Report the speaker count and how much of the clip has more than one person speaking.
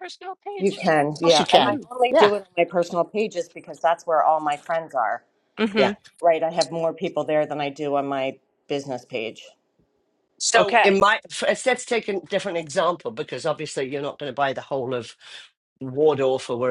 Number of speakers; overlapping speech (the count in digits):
3, about 9%